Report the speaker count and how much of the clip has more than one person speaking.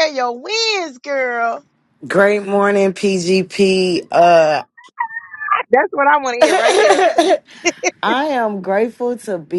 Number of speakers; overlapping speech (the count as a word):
two, no overlap